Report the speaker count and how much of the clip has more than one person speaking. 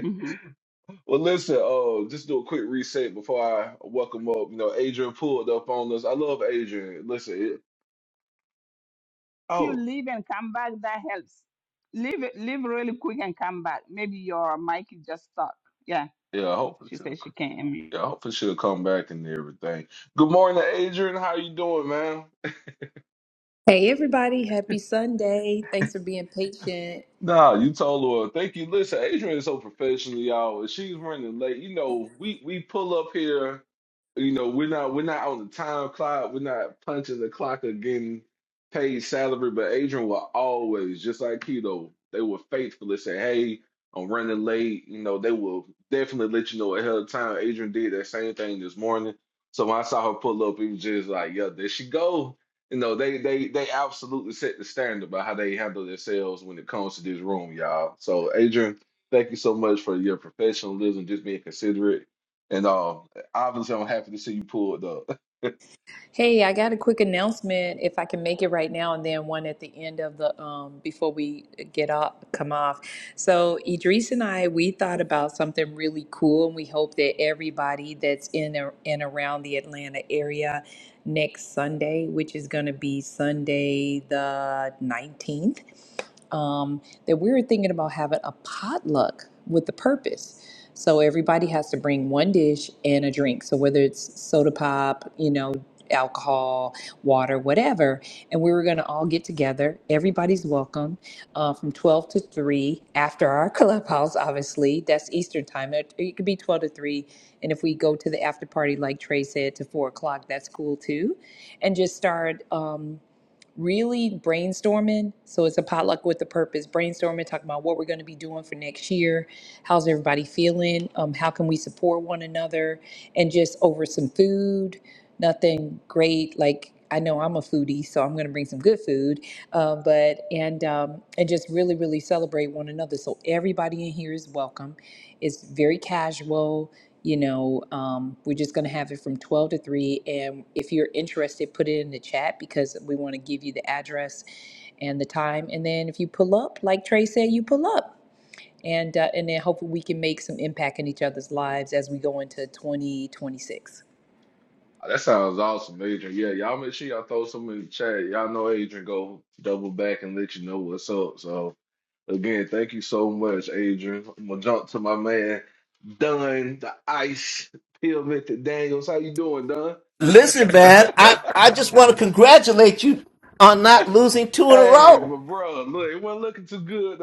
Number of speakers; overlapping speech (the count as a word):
four, about 1%